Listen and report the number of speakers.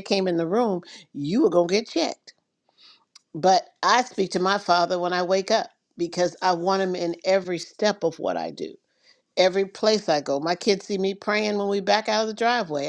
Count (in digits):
1